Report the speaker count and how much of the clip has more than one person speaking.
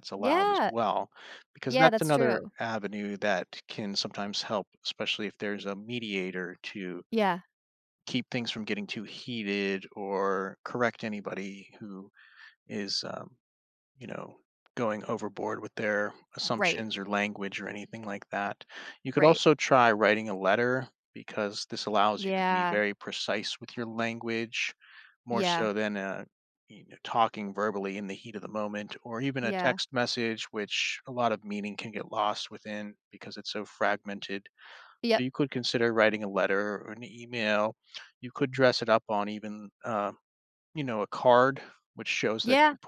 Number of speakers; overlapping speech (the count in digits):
2, about 8%